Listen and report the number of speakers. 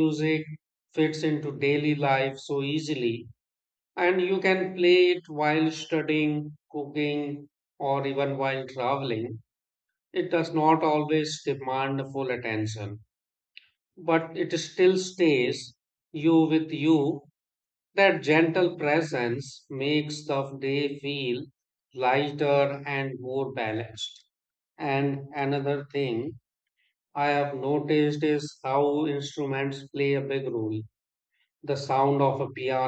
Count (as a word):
one